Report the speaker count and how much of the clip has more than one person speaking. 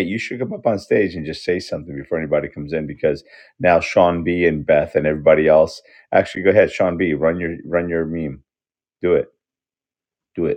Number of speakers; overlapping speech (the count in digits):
1, no overlap